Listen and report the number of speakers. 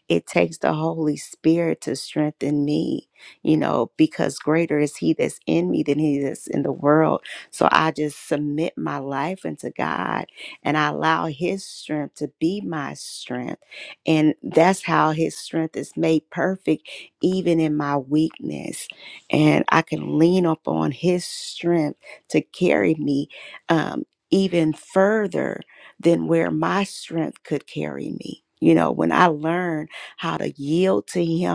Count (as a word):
one